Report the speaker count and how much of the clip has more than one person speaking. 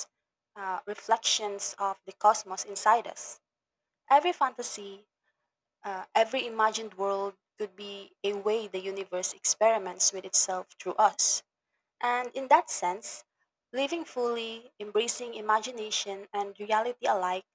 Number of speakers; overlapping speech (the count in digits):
1, no overlap